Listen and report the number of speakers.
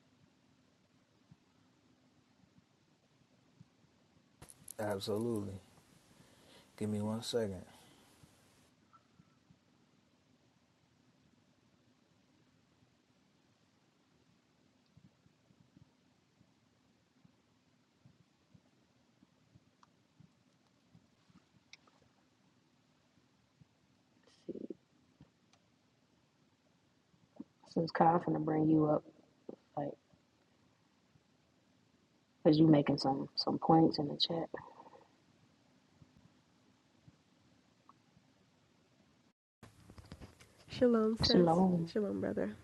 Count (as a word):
three